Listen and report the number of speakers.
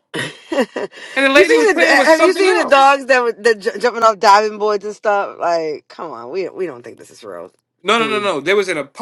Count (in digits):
2